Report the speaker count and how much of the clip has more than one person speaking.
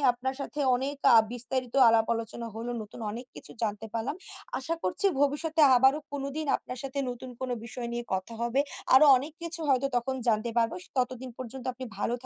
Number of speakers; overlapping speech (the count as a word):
one, no overlap